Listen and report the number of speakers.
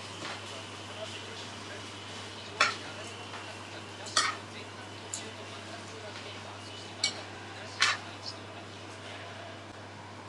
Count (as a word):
zero